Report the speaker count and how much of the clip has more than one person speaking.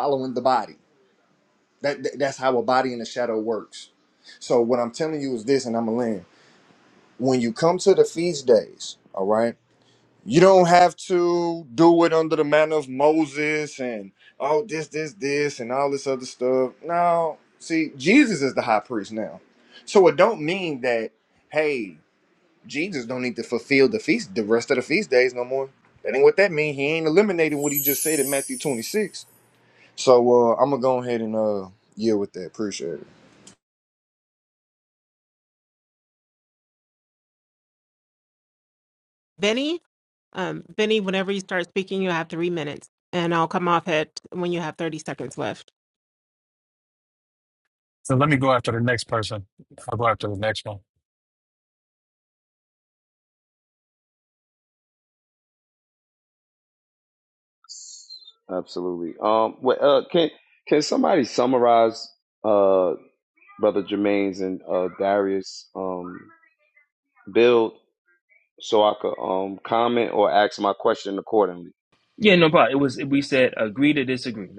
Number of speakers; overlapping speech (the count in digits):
5, no overlap